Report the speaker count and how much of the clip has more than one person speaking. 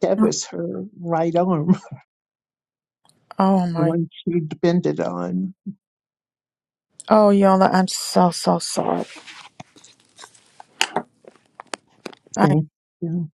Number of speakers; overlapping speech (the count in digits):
2, about 4%